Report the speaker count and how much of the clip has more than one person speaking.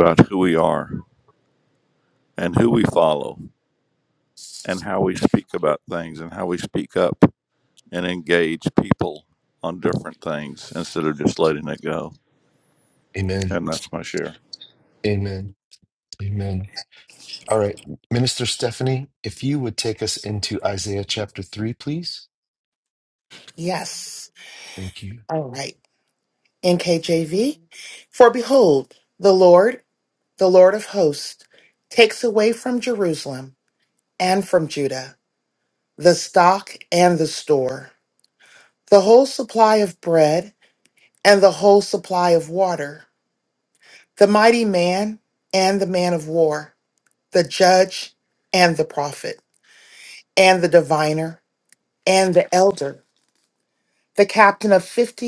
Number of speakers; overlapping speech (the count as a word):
three, under 1%